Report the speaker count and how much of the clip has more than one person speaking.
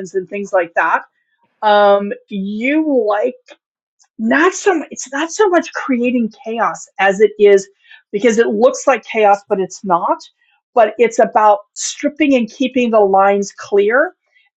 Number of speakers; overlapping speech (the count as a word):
one, no overlap